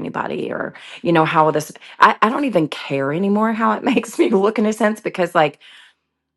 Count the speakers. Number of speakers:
one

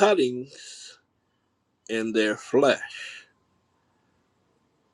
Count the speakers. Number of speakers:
one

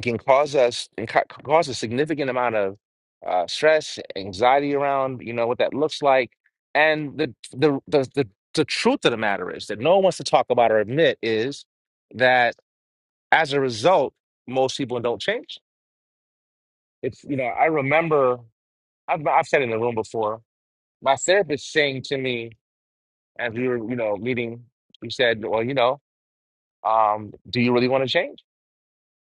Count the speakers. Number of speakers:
one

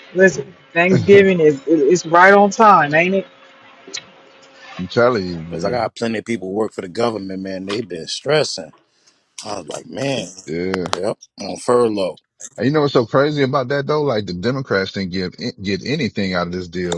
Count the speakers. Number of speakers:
three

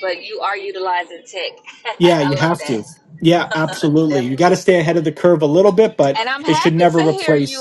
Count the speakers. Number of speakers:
two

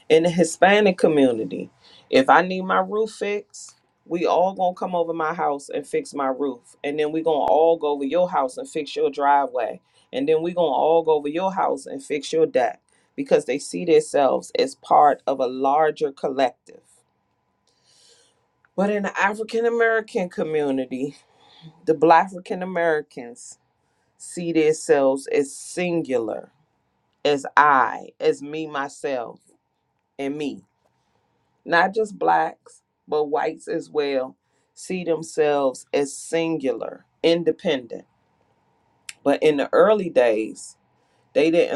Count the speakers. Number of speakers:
one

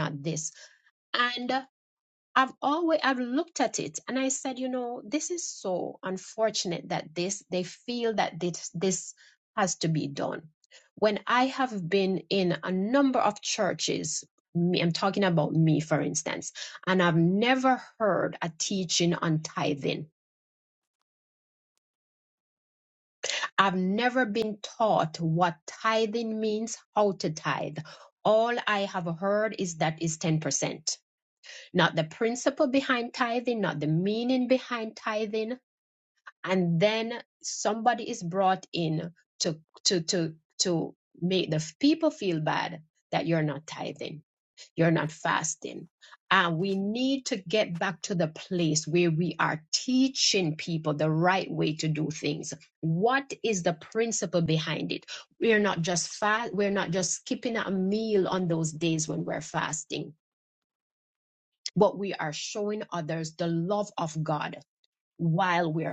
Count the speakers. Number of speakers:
one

